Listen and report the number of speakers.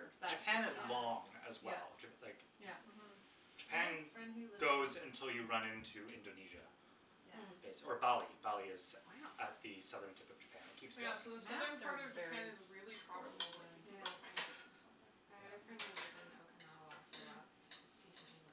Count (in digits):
4